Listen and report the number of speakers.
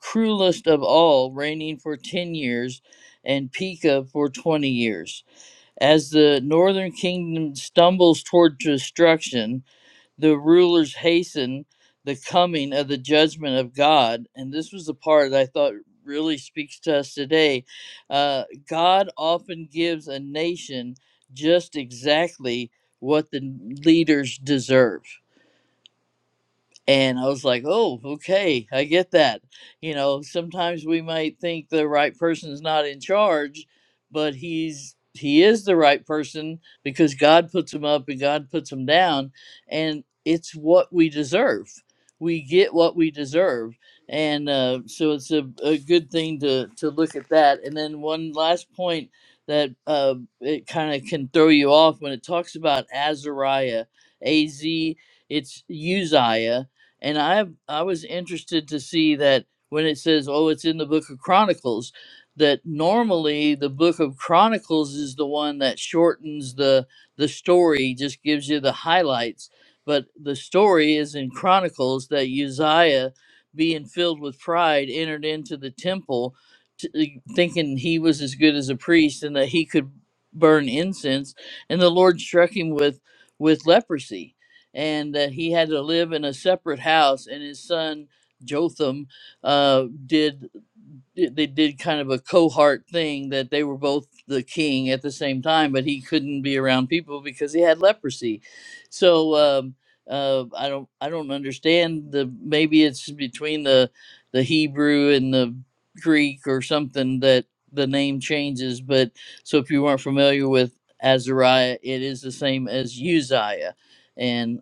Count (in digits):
1